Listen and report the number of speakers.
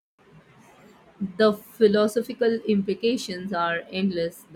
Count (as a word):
one